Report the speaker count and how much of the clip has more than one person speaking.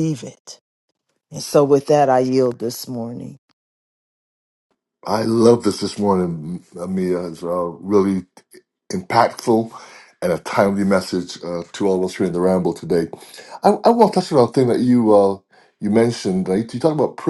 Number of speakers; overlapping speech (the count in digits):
2, no overlap